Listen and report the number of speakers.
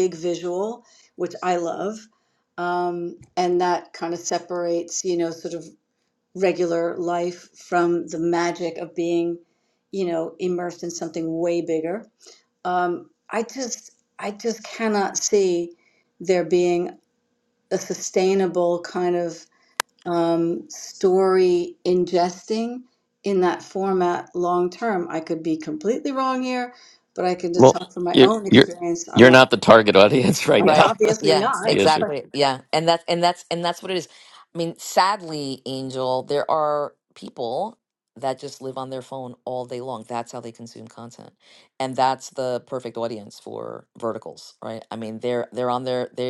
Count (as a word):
three